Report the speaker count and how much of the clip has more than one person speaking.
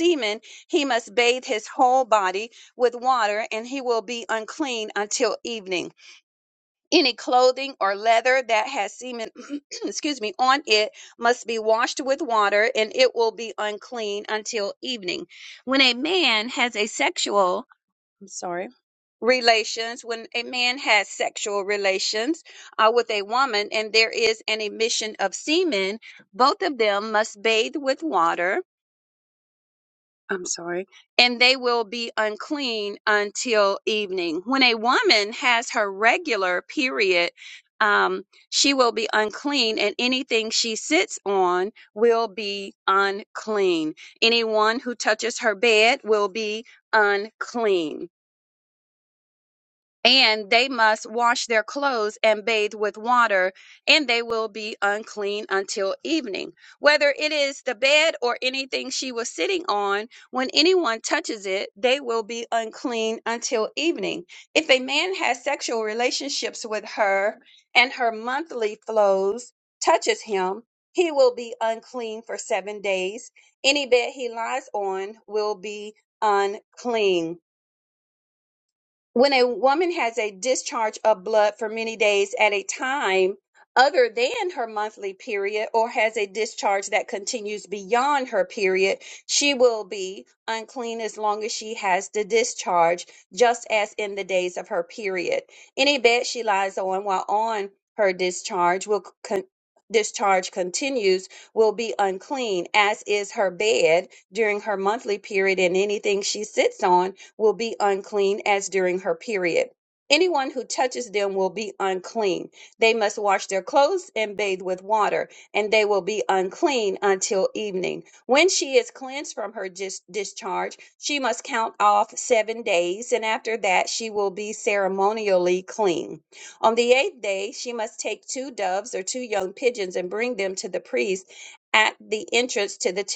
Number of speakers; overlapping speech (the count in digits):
1, no overlap